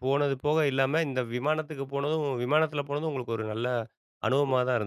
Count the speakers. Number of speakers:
1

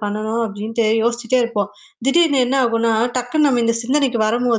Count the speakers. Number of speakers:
1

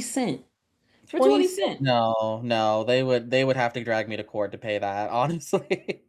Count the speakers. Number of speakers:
2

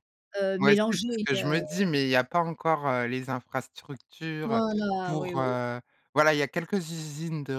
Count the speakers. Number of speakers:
2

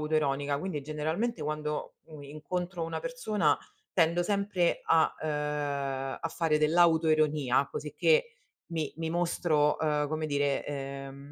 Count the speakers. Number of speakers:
1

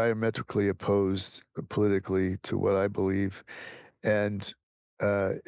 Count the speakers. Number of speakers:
1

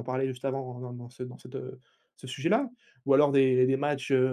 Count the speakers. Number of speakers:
1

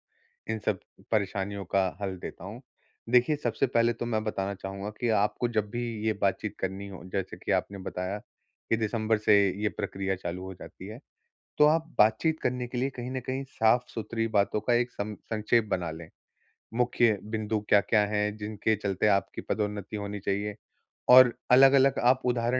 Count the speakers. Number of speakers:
1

